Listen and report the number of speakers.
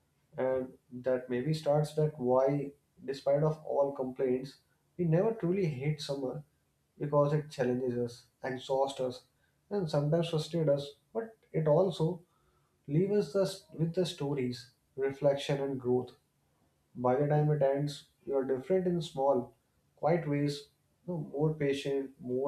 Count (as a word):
one